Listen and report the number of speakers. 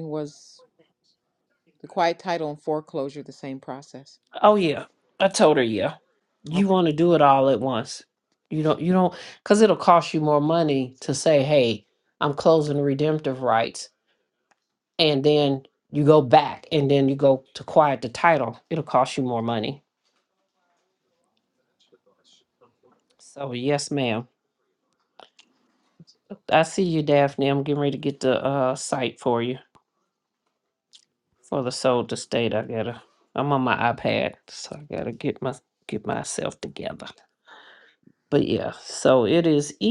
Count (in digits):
2